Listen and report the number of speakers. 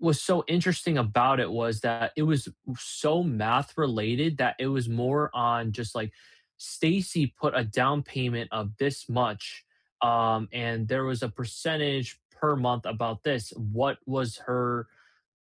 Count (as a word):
one